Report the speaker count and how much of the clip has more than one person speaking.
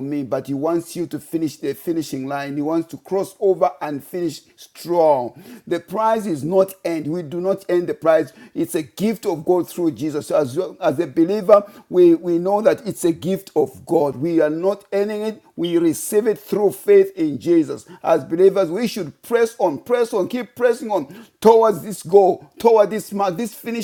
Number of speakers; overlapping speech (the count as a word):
one, no overlap